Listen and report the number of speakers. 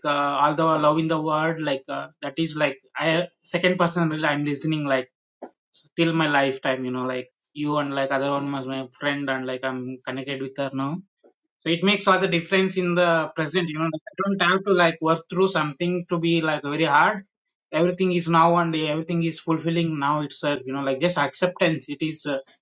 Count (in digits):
1